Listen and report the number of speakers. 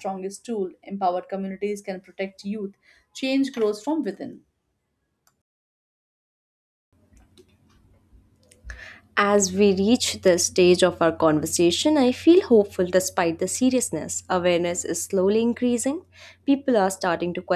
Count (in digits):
2